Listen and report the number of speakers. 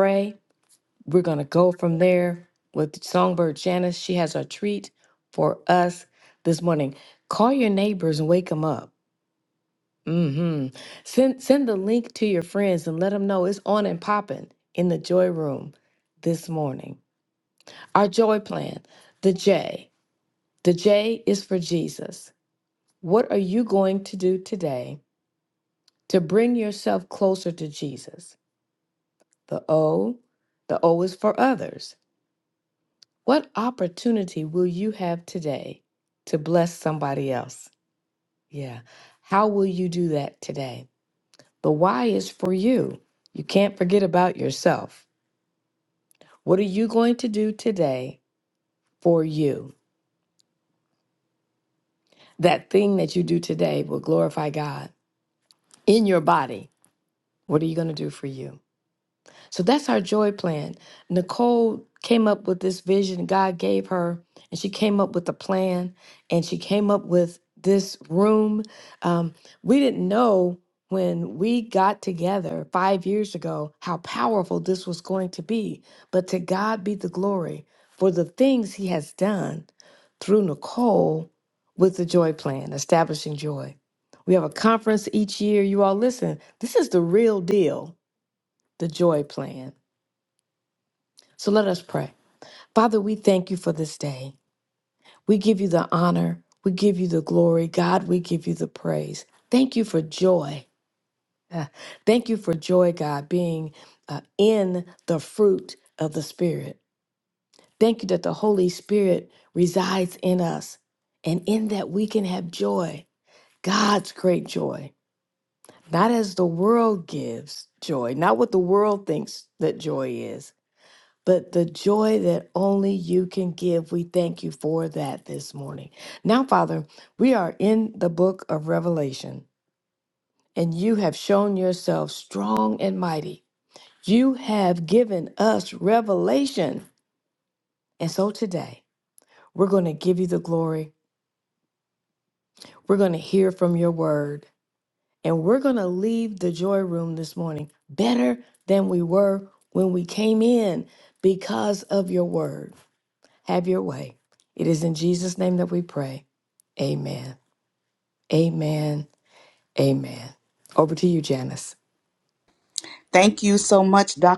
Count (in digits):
2